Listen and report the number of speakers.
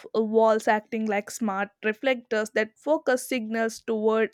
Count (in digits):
1